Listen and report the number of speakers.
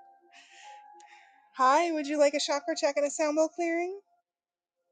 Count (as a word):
one